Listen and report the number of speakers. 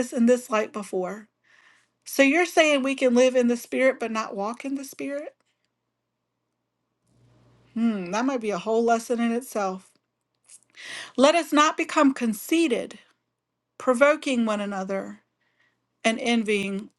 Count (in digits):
1